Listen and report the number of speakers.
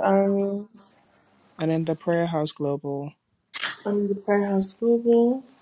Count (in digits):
2